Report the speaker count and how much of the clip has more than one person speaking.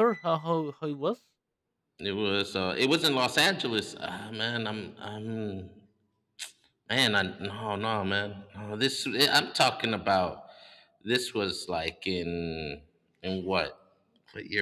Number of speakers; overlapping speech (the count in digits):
2, no overlap